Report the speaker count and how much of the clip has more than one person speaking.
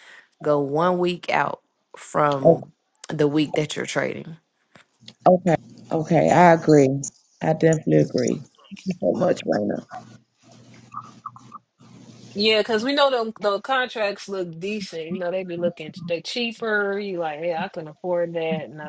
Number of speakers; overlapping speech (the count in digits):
3, about 1%